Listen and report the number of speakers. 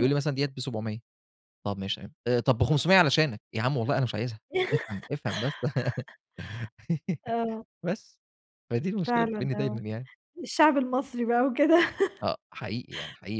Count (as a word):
two